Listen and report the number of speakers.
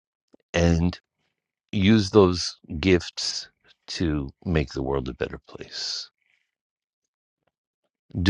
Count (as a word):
one